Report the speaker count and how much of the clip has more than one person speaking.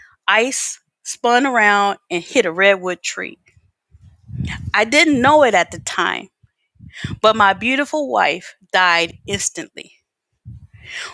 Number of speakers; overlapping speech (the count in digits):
1, no overlap